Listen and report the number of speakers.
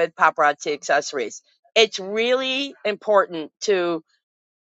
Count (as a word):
one